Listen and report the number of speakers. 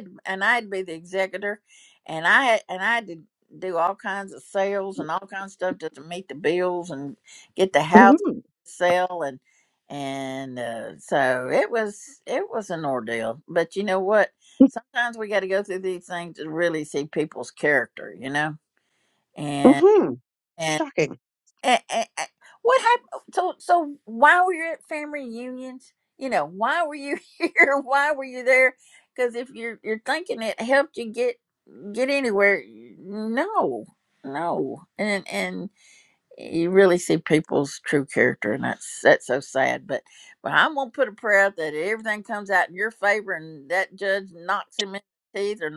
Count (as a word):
two